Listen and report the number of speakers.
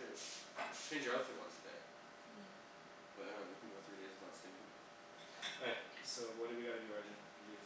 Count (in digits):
2